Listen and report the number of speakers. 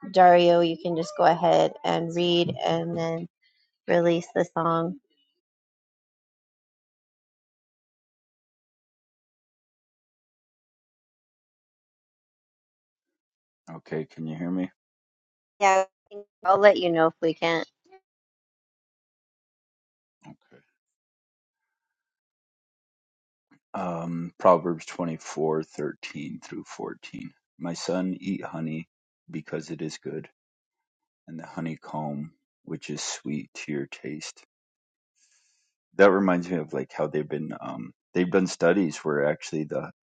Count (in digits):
2